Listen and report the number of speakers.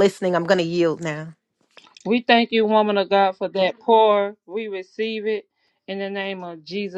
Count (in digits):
2